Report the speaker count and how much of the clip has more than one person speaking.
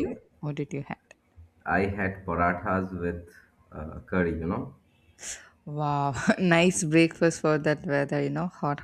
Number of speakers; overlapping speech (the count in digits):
2, about 3%